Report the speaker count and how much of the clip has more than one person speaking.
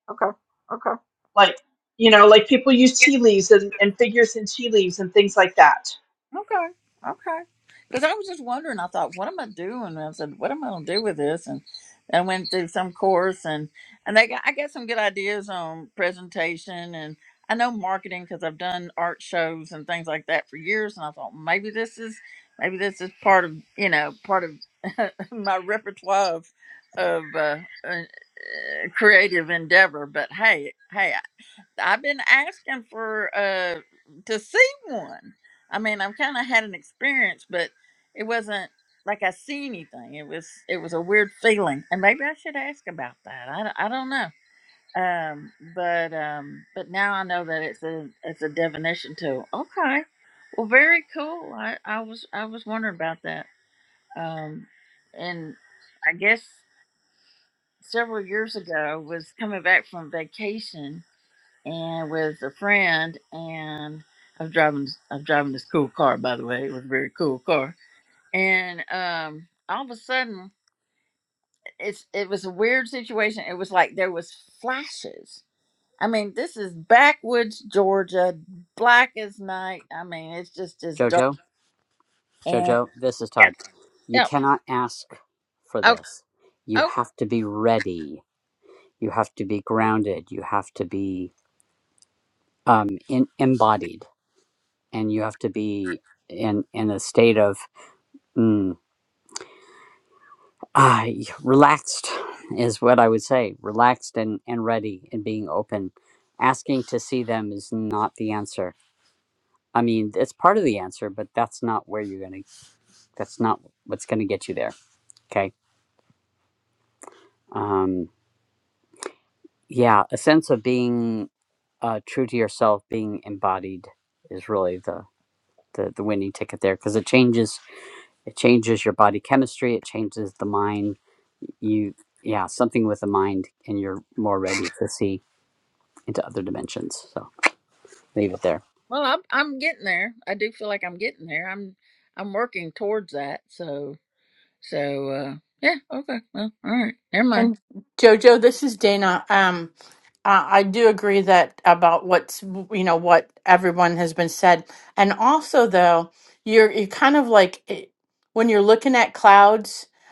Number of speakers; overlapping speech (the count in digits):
4, about 1%